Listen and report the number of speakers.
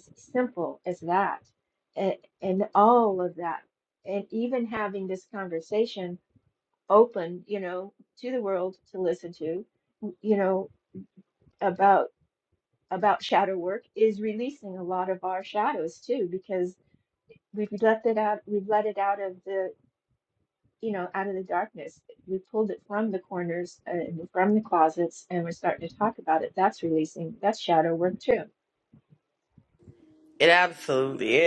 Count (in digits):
2